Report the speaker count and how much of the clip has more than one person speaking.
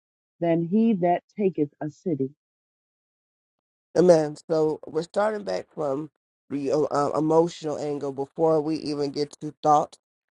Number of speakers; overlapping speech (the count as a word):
two, no overlap